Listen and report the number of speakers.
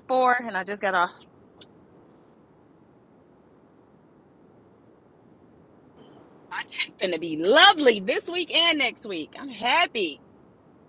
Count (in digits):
1